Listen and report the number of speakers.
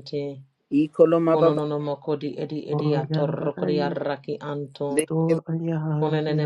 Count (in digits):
3